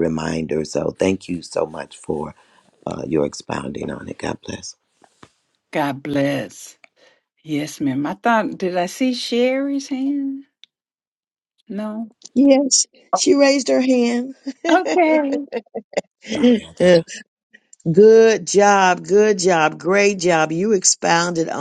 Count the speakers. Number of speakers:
3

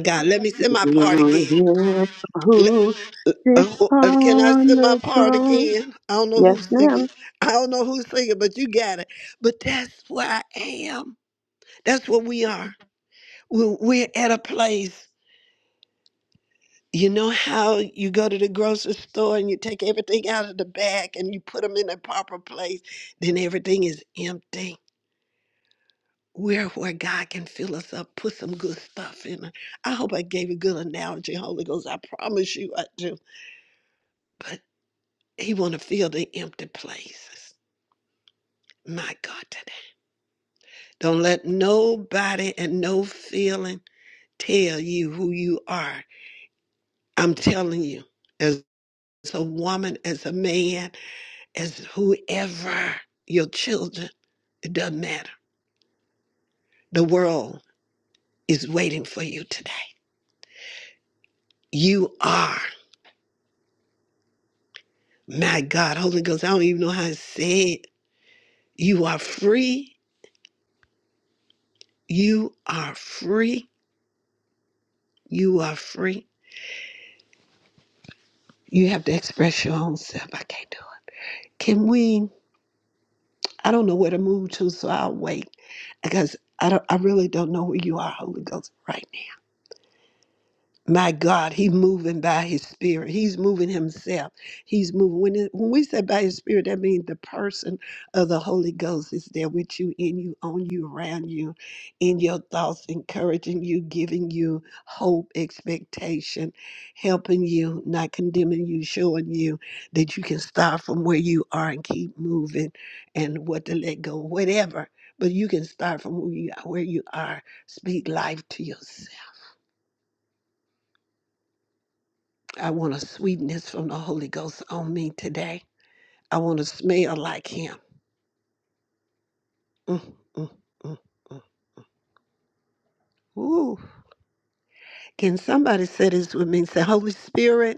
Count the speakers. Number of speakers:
2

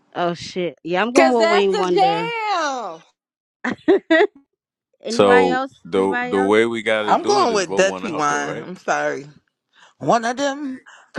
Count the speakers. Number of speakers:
4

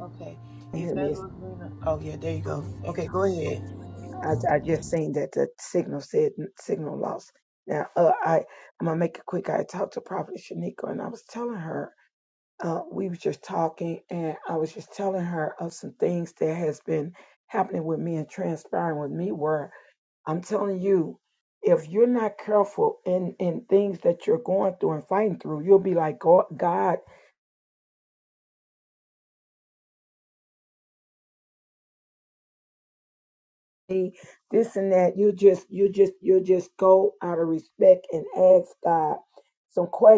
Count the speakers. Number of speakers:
2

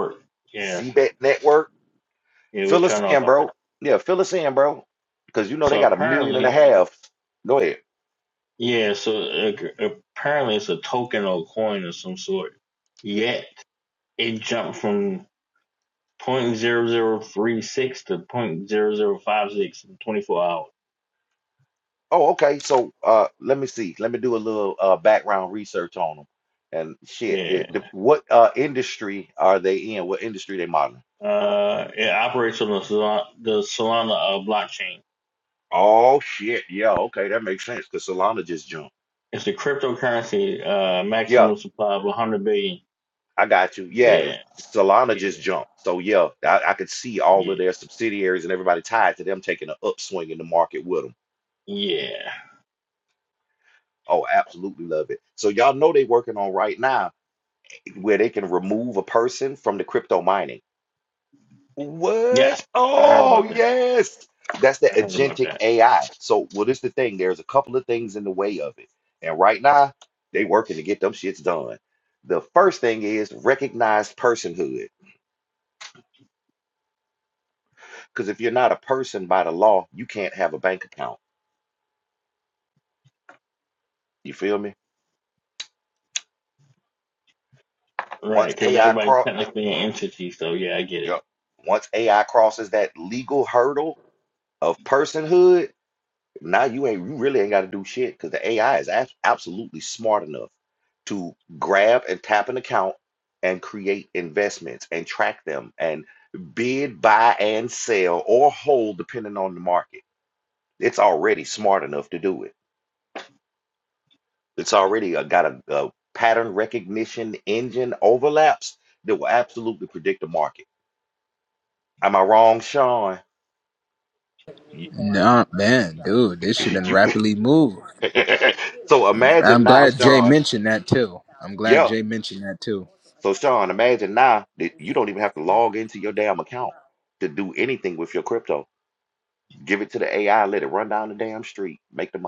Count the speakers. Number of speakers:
3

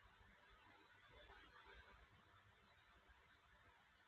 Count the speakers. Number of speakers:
0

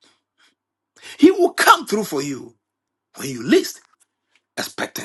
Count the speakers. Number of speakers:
1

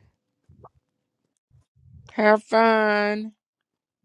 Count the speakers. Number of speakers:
1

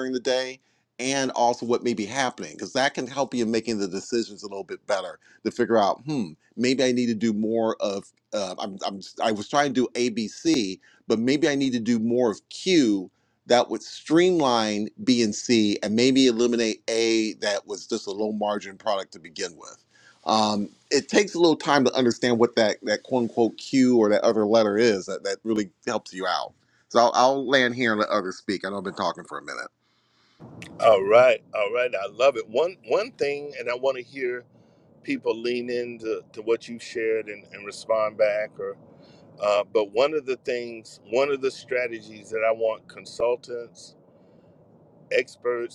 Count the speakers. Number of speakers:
2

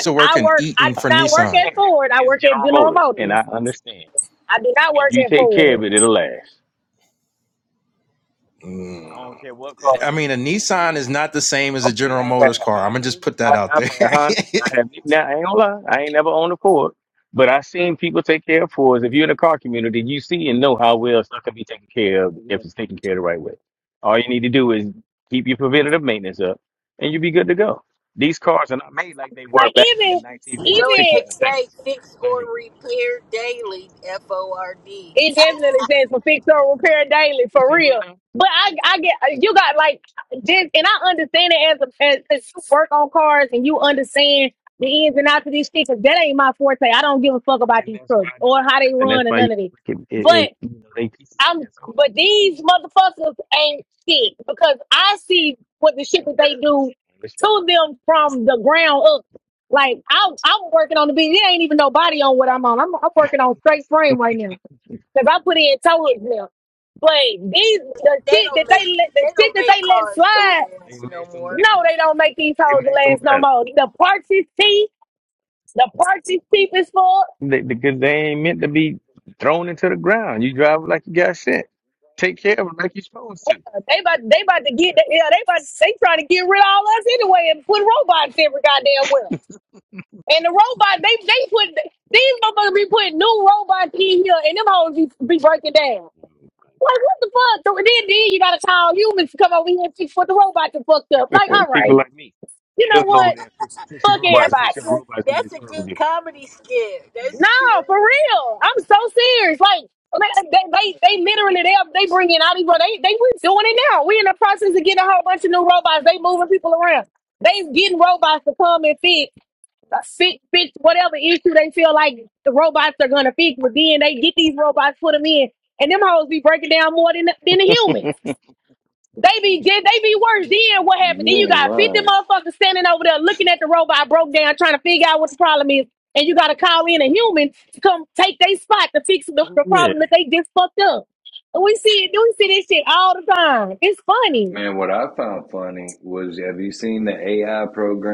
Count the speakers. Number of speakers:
5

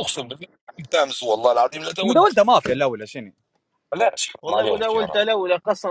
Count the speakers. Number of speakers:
3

